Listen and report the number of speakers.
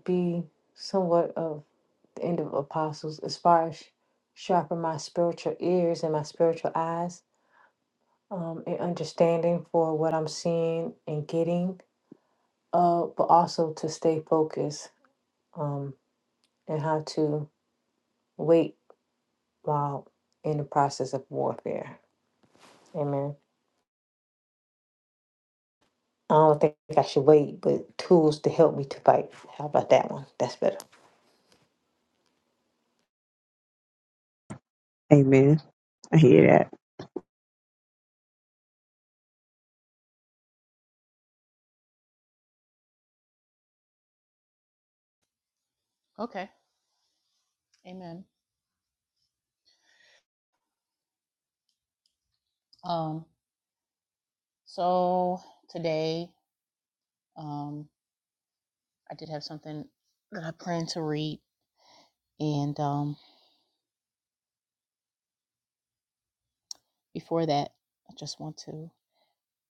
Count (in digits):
3